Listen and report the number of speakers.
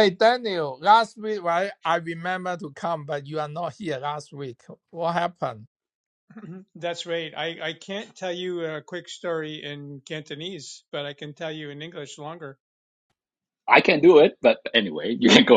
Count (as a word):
three